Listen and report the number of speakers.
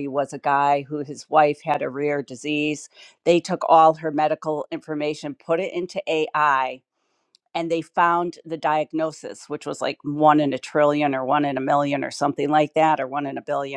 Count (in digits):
1